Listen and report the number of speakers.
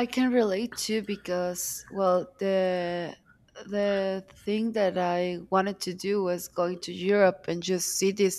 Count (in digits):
1